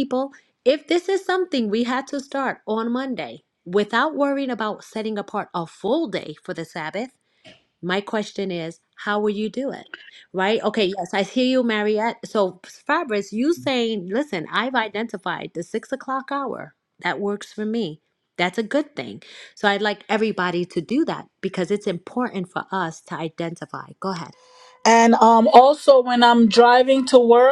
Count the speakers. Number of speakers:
2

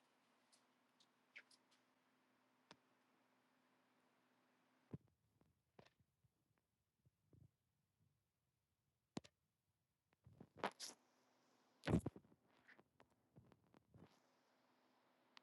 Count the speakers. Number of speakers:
0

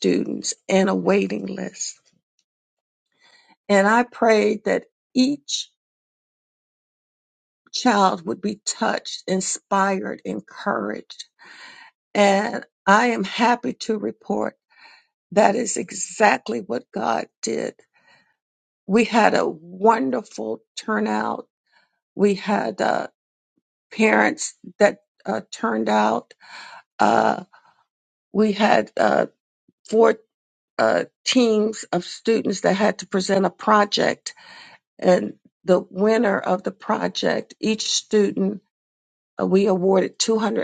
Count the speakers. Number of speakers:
1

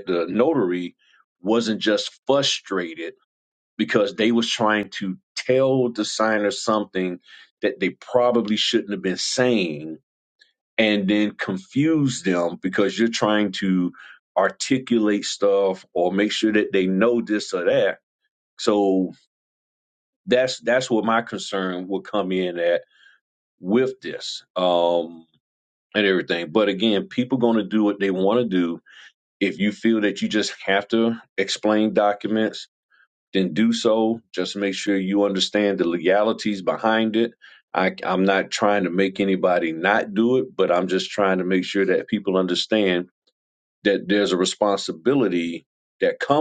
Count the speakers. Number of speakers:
1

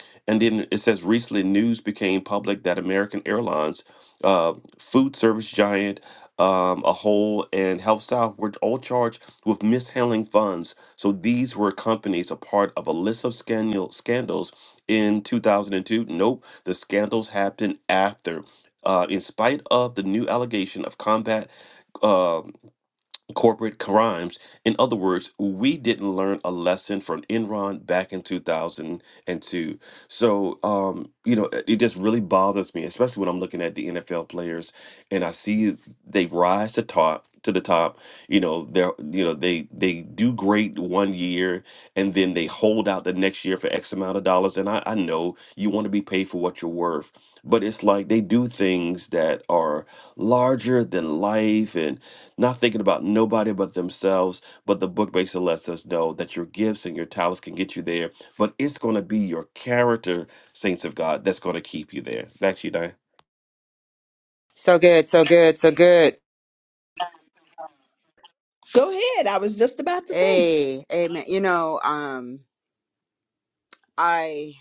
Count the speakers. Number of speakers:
3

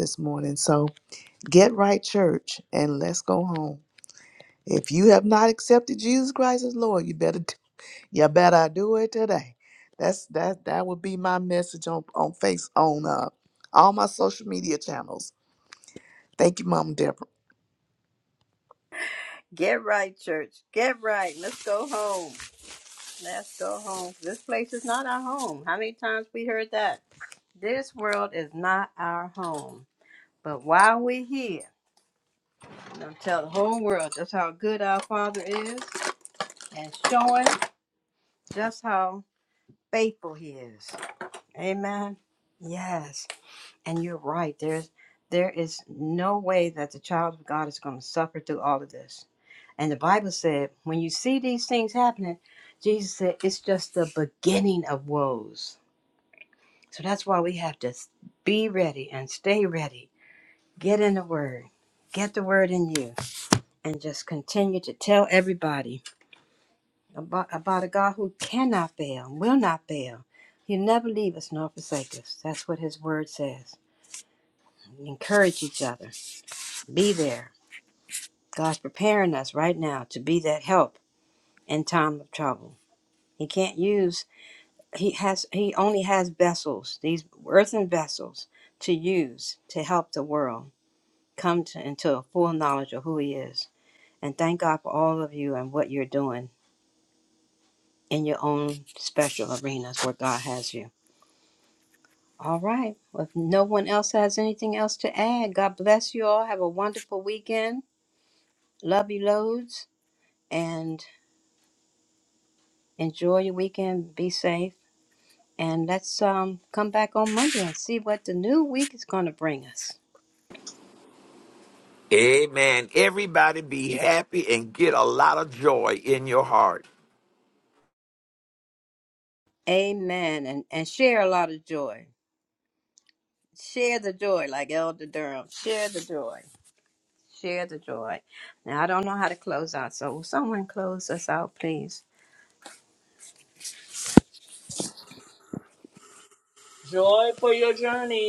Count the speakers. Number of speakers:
4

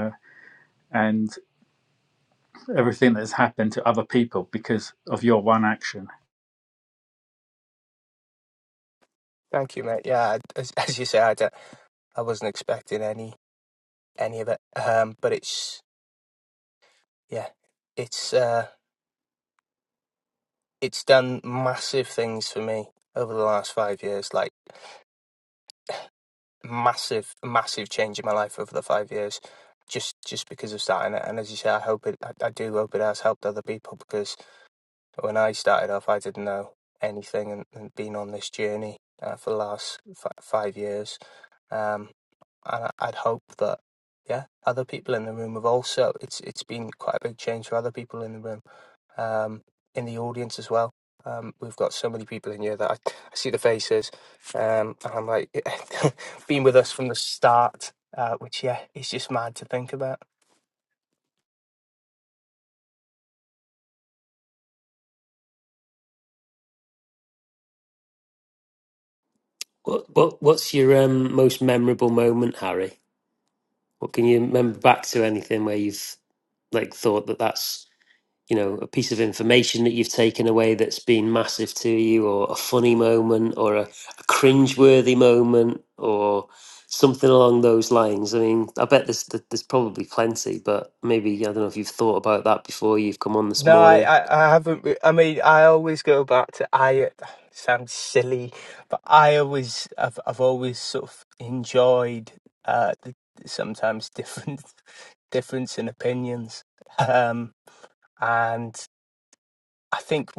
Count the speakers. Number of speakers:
3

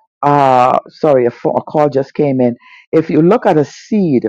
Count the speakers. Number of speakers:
1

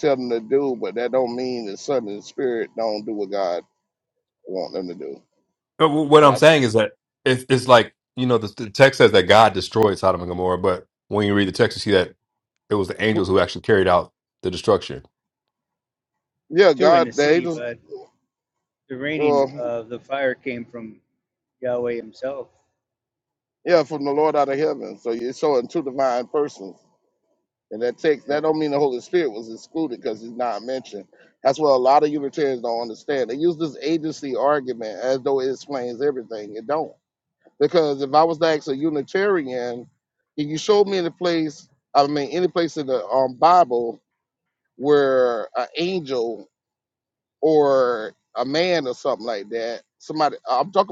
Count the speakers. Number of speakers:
3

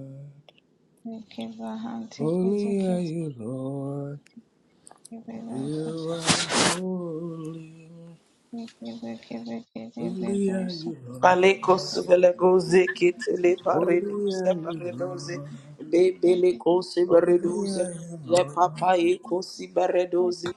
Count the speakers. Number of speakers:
3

